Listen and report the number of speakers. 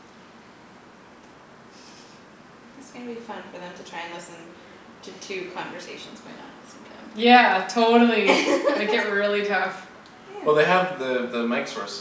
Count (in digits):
3